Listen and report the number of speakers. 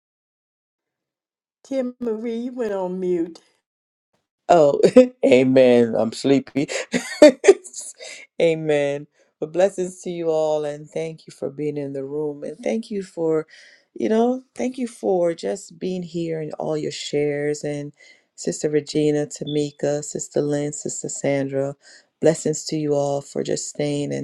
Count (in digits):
2